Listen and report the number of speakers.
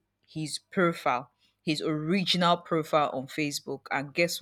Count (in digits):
1